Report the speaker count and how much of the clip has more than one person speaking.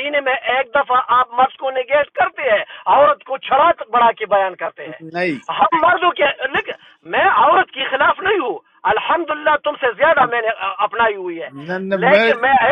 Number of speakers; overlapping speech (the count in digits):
2, about 3%